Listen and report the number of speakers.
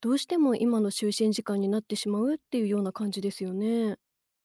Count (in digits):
1